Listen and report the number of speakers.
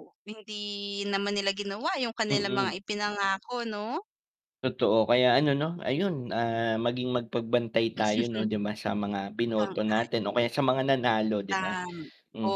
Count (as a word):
two